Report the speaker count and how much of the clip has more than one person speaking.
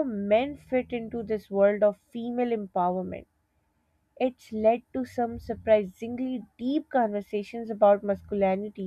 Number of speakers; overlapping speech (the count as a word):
one, no overlap